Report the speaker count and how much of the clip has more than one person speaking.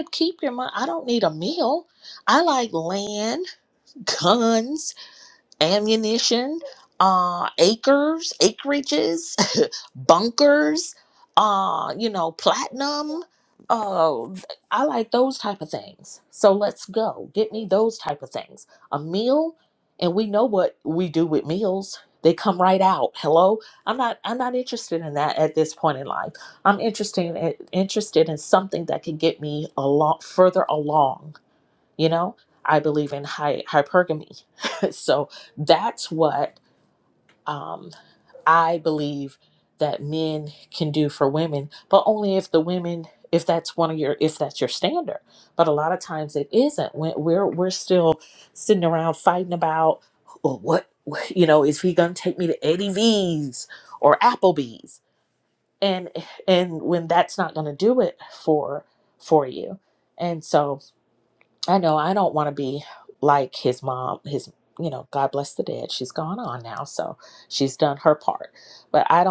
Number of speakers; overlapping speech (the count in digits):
1, no overlap